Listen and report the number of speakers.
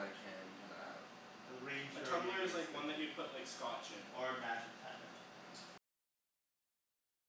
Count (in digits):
3